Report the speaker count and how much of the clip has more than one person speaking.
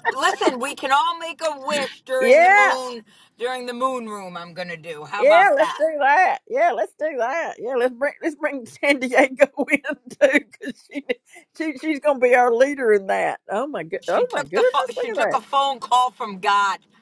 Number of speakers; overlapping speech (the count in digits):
2, about 15%